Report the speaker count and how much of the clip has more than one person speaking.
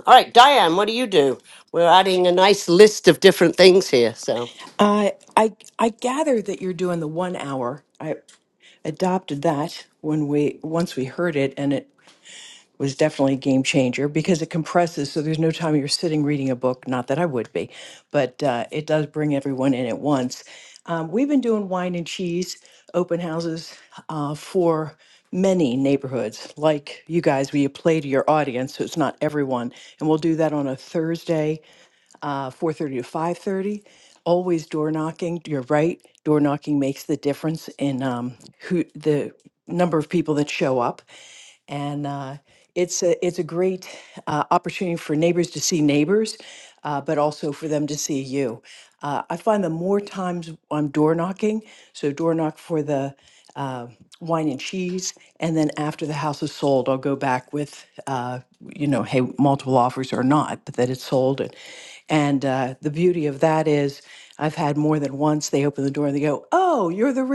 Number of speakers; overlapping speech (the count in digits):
2, no overlap